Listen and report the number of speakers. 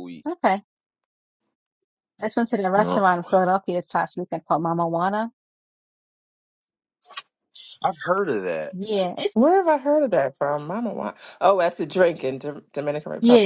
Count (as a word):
three